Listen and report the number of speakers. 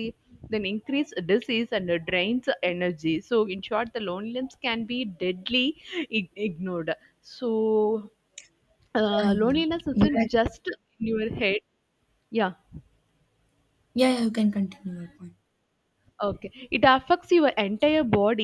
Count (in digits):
2